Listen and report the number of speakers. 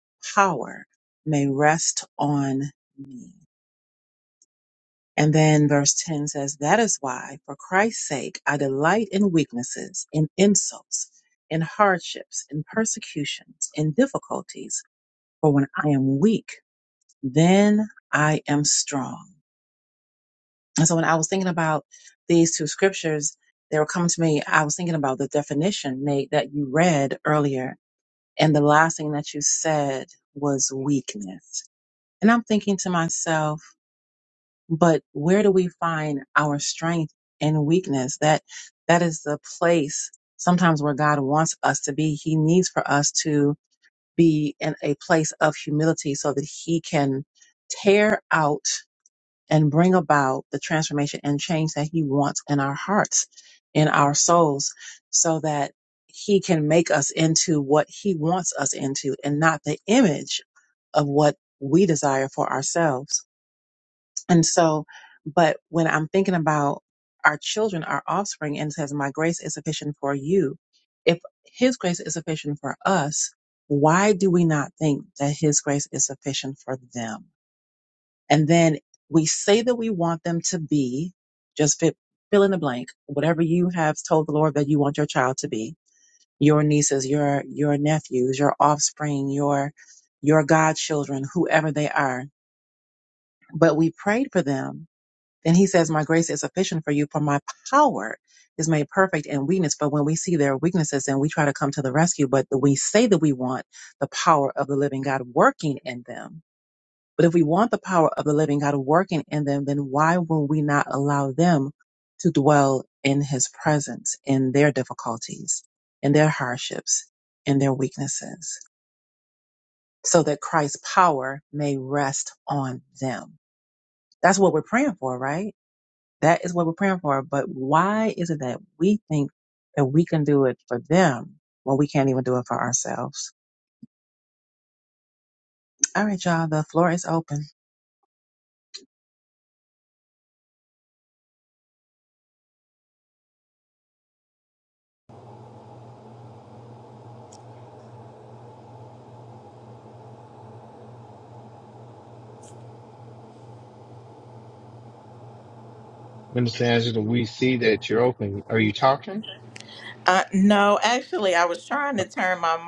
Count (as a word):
three